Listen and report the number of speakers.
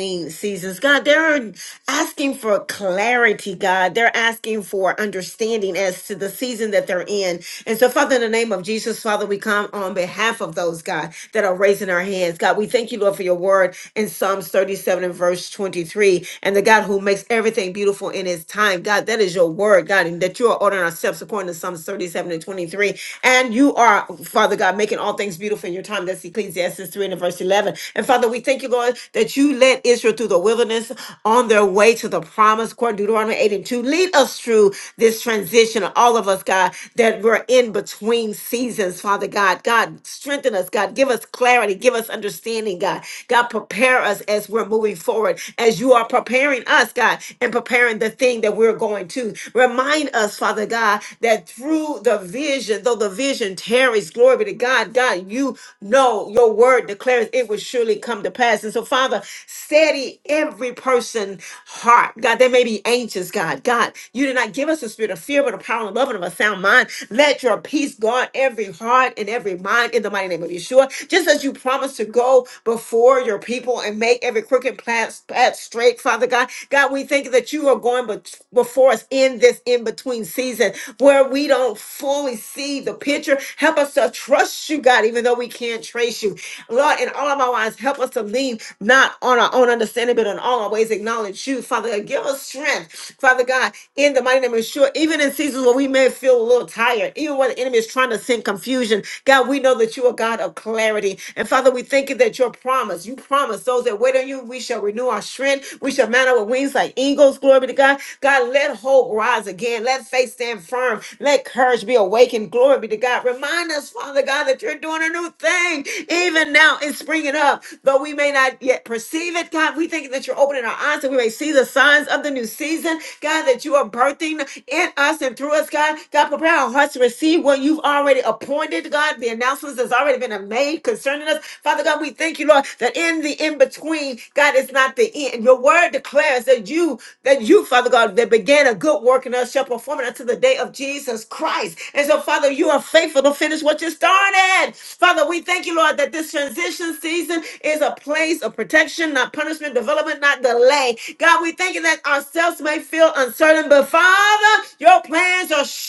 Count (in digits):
1